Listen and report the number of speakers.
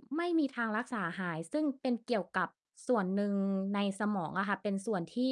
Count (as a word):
one